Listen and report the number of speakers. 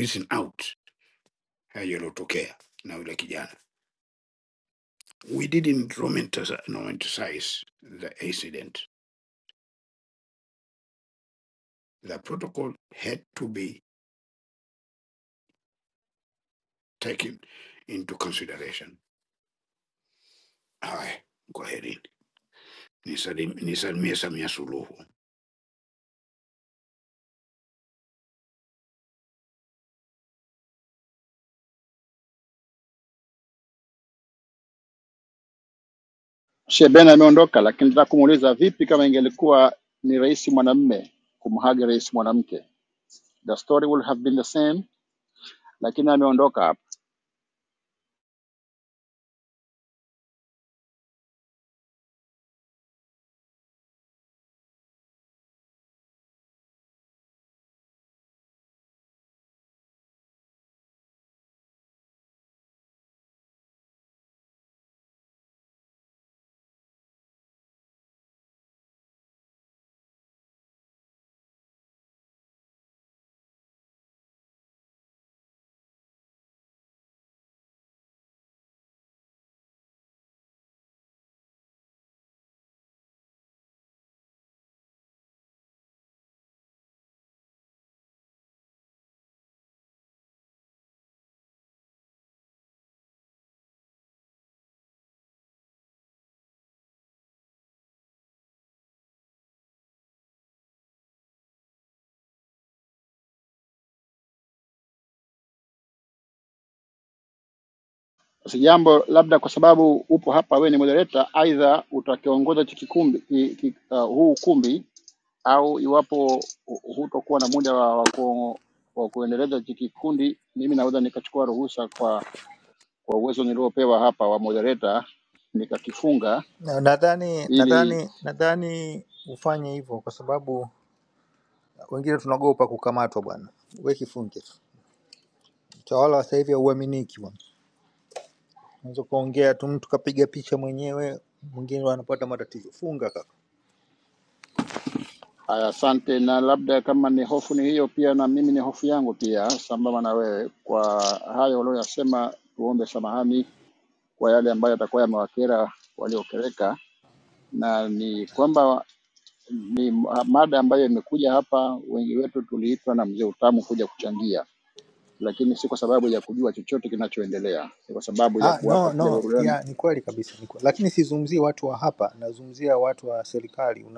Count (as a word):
three